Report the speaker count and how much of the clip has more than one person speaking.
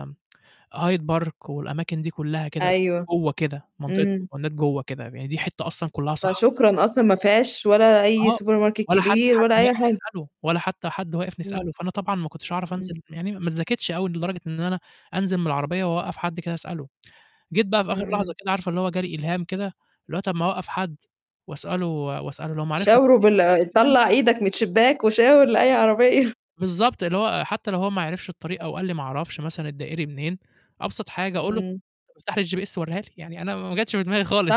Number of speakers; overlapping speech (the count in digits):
2, about 9%